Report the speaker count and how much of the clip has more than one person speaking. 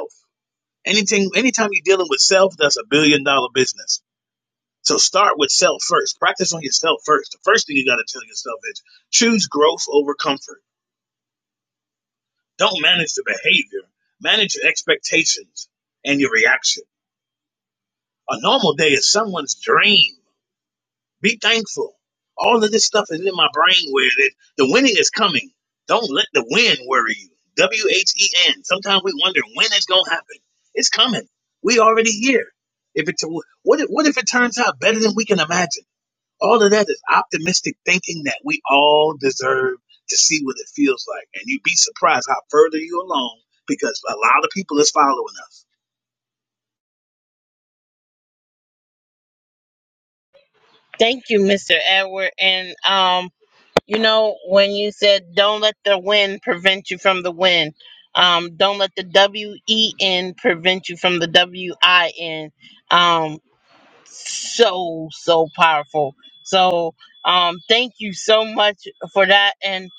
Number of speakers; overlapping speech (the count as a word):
two, no overlap